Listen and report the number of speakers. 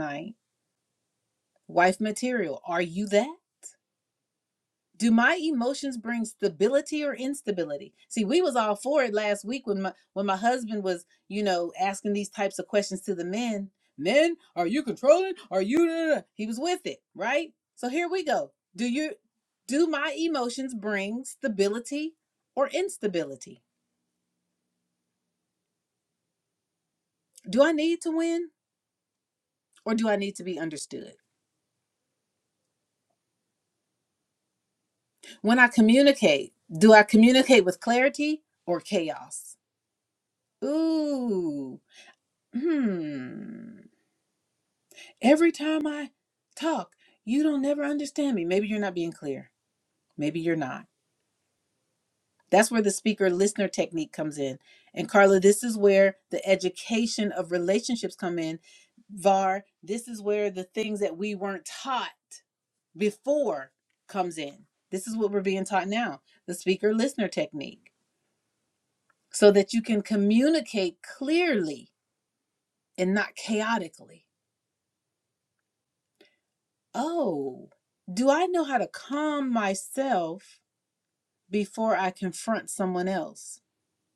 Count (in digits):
1